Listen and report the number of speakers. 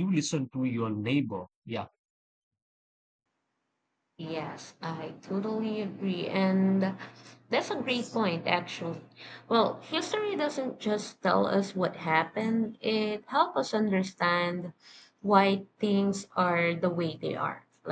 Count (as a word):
two